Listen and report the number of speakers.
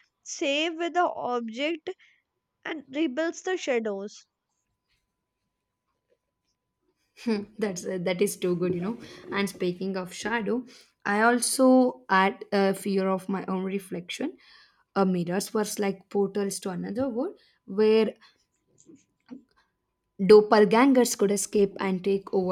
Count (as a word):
two